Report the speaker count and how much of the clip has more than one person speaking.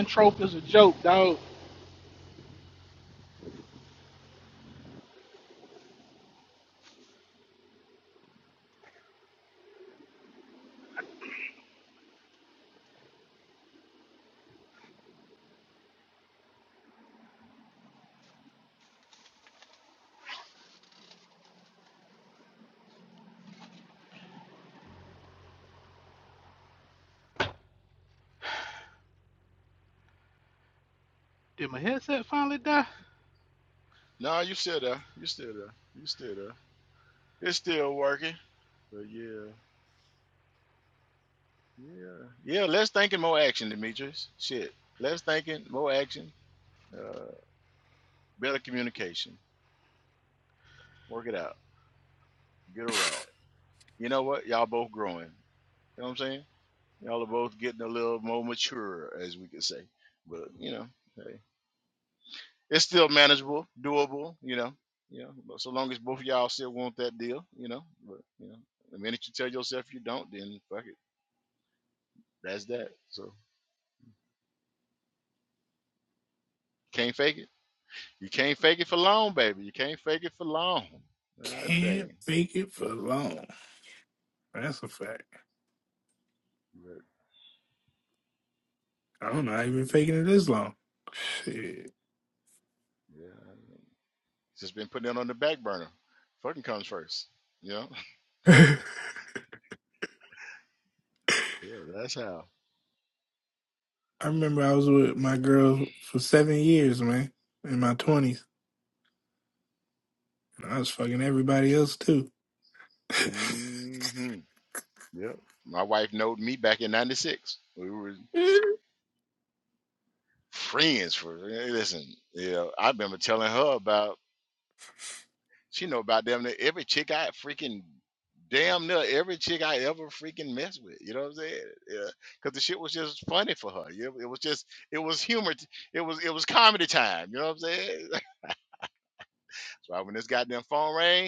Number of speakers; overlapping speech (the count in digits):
3, about 1%